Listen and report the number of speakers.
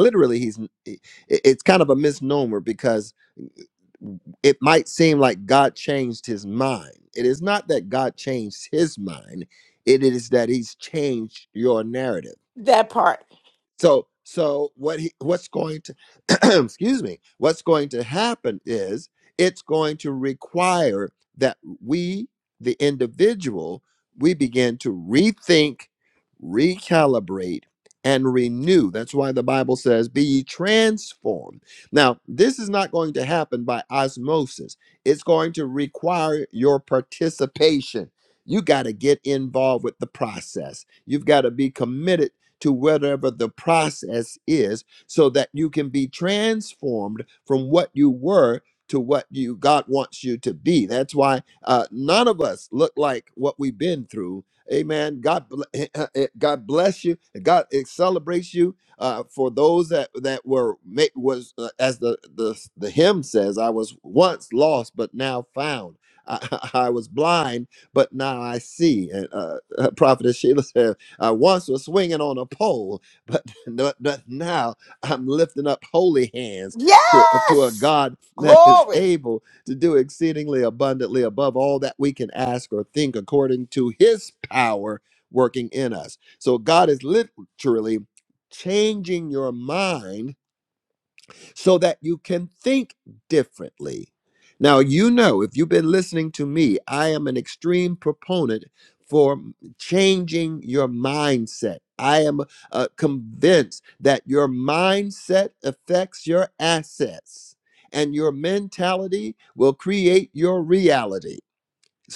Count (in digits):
2